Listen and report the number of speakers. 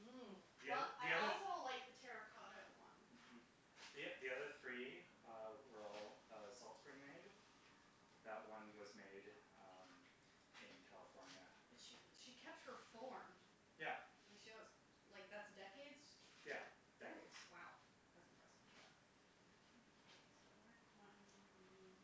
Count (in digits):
2